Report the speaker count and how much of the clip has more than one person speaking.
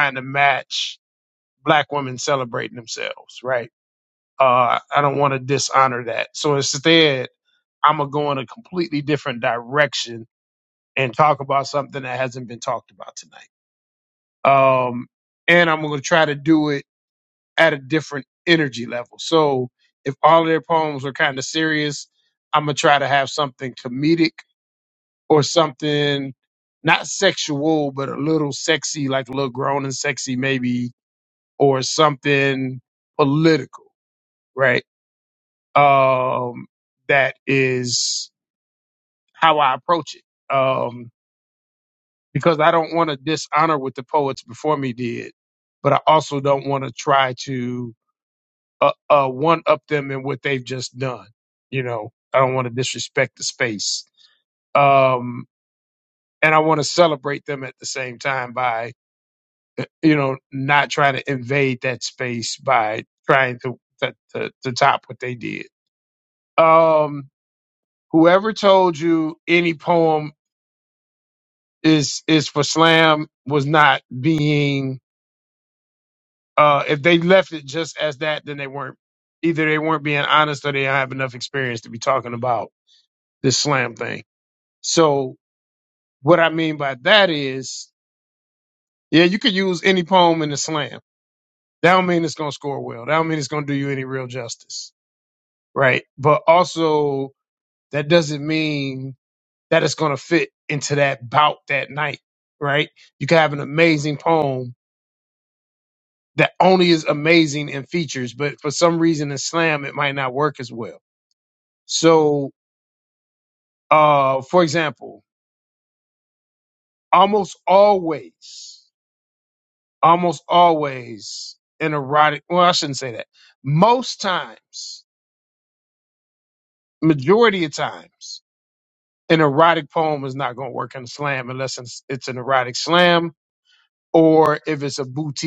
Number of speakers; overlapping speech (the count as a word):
one, no overlap